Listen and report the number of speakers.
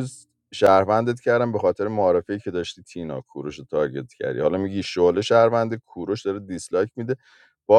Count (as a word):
one